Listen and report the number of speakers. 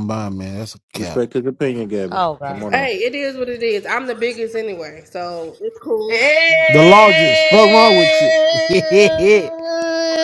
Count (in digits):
4